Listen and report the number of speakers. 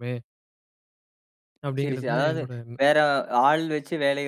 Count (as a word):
two